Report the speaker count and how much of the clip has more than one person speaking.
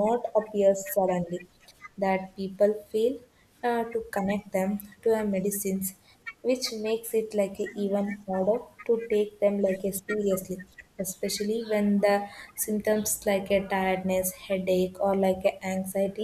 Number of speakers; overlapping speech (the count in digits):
1, no overlap